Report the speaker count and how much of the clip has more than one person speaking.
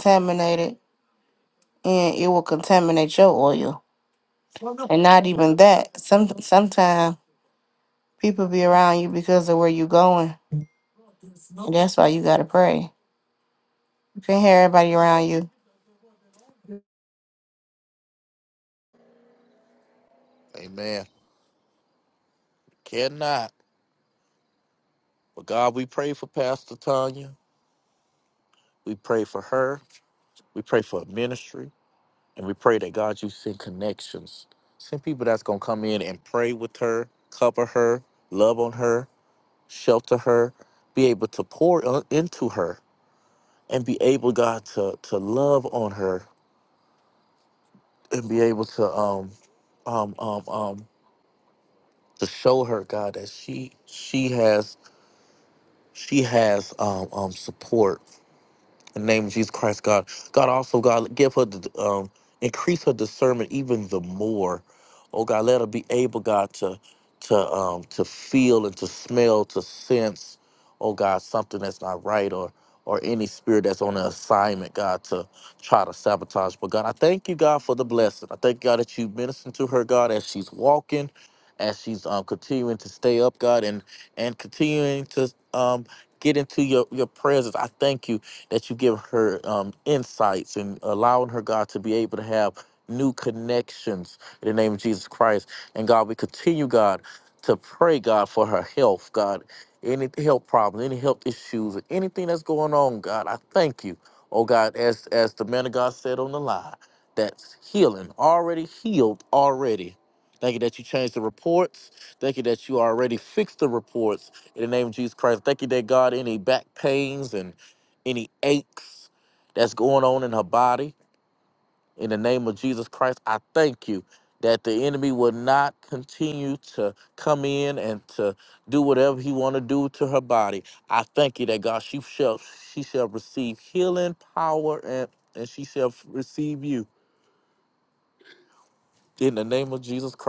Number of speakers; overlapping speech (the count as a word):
two, no overlap